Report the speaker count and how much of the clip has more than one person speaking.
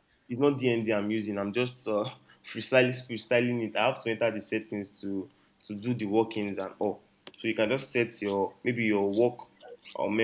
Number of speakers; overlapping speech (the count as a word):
one, no overlap